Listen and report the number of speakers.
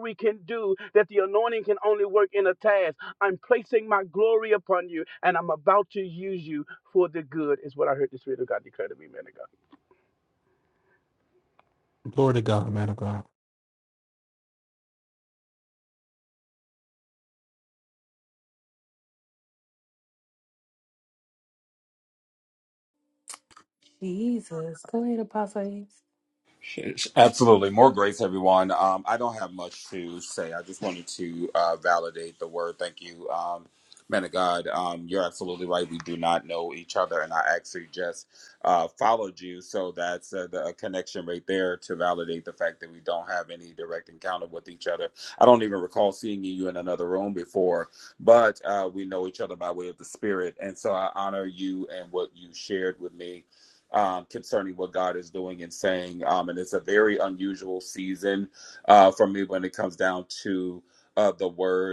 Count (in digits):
4